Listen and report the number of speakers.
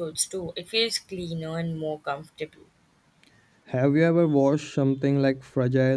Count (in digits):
2